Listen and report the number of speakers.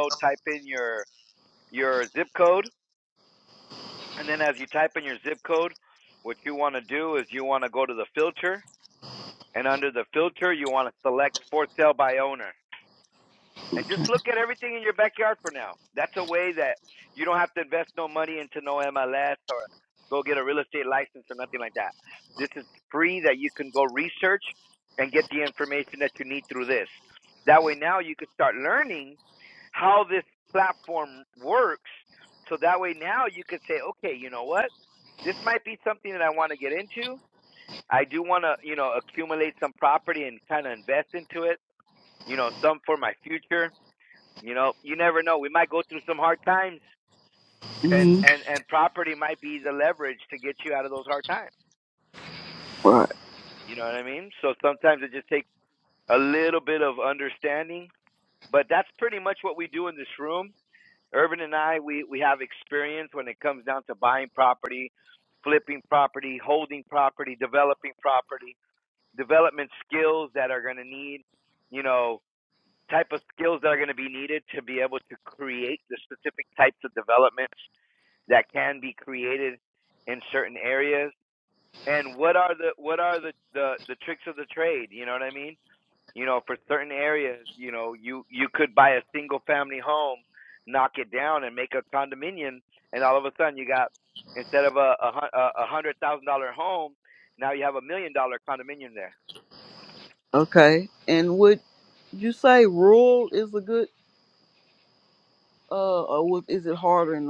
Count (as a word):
two